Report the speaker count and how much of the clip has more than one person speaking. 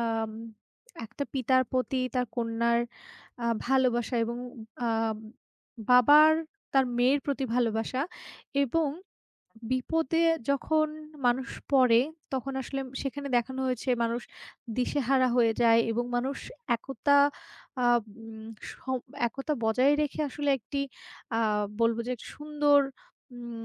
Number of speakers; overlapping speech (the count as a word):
one, no overlap